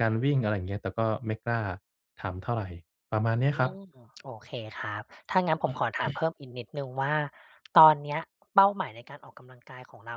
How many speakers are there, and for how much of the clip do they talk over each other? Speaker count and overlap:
2, about 4%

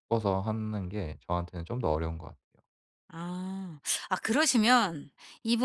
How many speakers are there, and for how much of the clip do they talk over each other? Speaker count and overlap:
2, no overlap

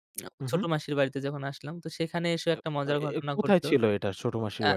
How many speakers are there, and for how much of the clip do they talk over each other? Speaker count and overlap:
2, about 32%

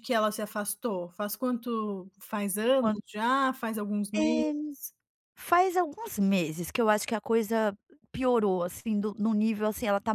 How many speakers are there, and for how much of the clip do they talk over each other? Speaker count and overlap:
2, about 5%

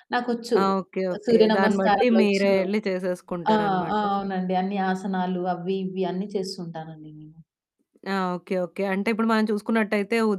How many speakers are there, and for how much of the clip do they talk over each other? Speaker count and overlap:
2, about 15%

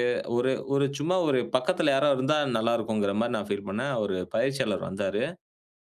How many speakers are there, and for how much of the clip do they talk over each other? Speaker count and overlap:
1, no overlap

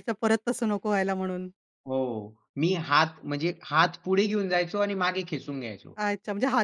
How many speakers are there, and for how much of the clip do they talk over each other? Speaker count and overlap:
2, no overlap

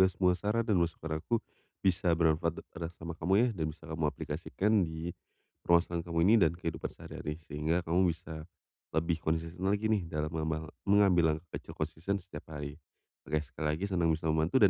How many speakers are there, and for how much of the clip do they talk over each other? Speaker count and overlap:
1, no overlap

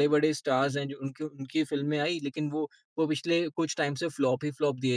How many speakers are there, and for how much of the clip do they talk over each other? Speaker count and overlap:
1, no overlap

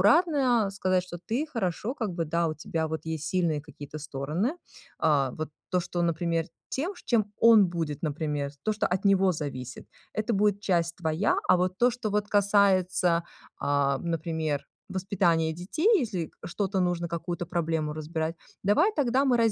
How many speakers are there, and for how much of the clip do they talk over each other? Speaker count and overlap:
1, no overlap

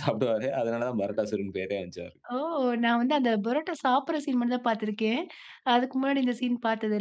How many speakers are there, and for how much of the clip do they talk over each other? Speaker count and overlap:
2, no overlap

